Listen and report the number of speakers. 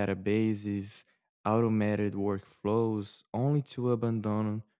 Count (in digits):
1